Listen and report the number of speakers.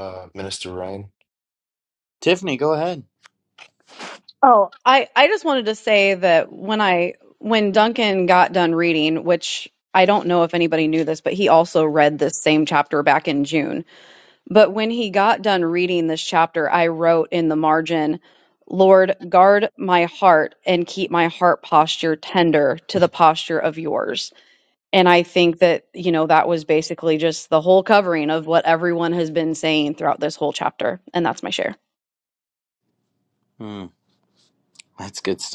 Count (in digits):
3